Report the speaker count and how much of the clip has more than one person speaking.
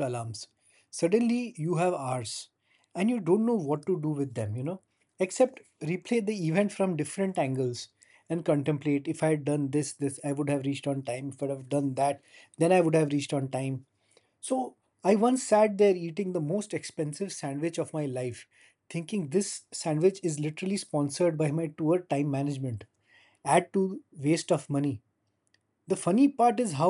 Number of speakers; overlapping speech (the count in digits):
1, no overlap